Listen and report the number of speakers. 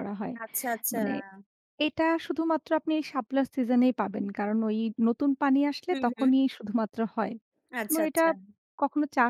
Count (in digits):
2